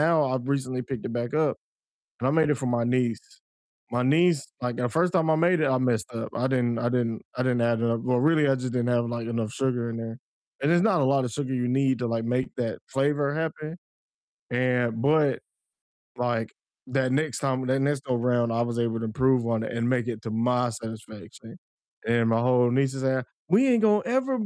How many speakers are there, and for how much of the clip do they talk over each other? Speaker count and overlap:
1, no overlap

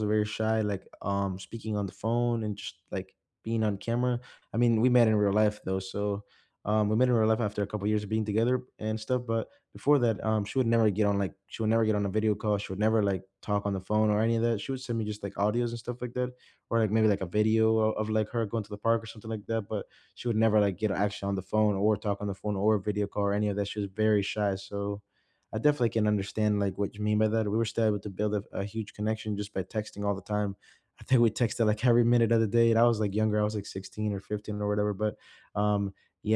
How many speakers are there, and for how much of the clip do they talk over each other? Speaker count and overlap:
1, no overlap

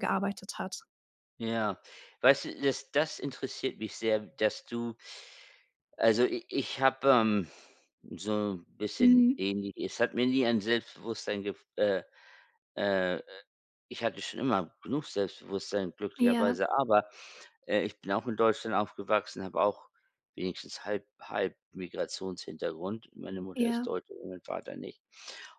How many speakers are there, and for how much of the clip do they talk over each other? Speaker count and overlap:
2, about 4%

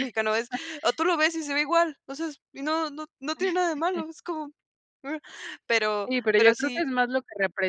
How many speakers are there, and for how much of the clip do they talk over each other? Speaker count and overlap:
2, about 10%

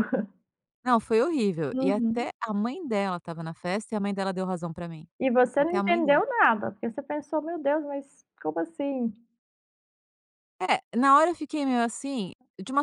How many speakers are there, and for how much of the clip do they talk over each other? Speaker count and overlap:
2, about 8%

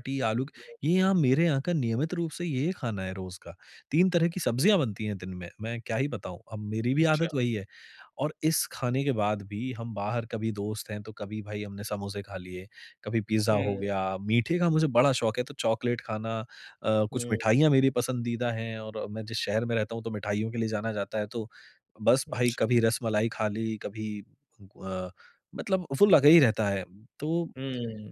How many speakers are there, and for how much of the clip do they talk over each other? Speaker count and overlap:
2, about 5%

